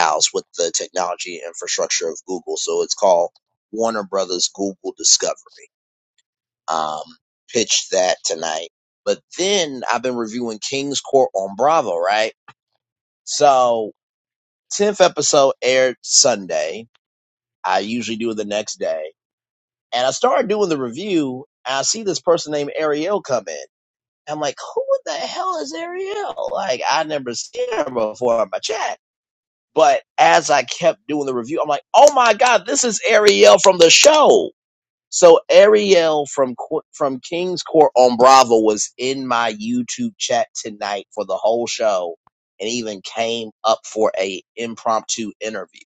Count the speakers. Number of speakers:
1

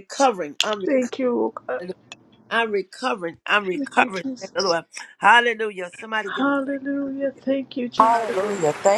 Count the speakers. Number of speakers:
3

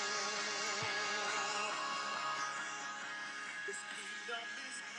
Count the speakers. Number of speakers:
0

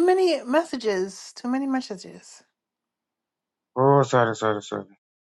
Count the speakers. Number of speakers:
2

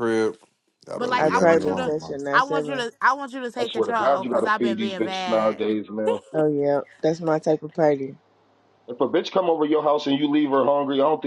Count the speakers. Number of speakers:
4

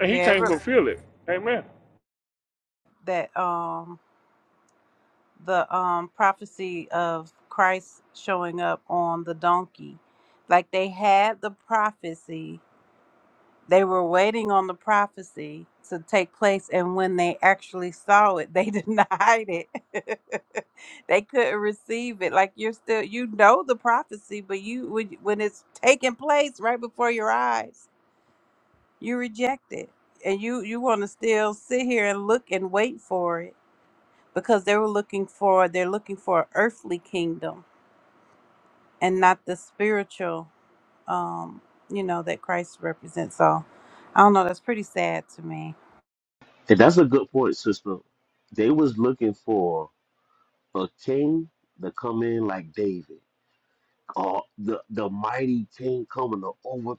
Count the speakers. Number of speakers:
3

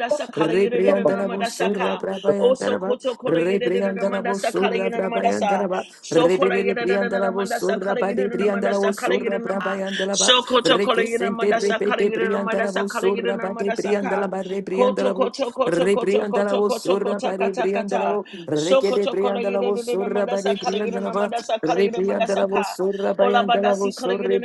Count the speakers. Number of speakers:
2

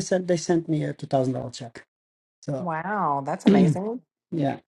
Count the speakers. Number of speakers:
2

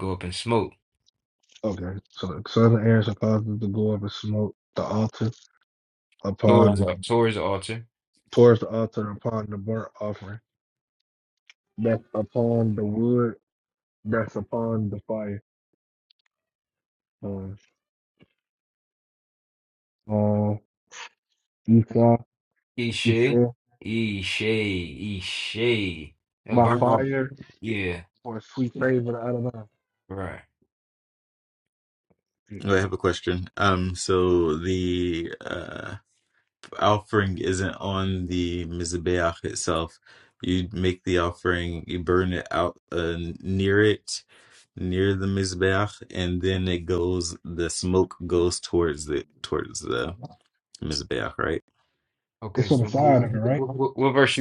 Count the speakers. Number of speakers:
3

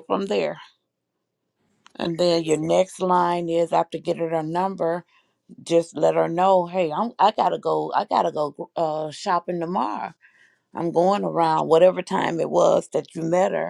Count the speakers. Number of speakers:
1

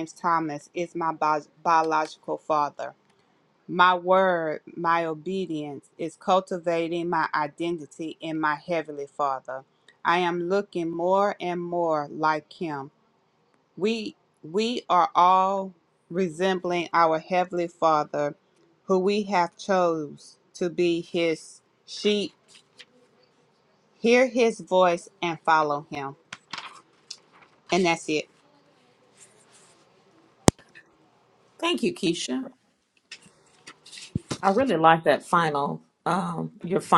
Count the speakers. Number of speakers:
2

